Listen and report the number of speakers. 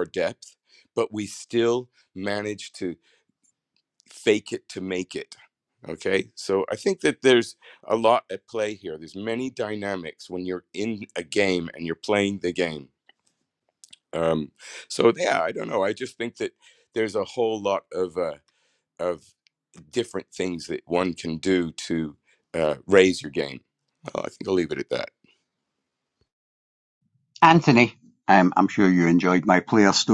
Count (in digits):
2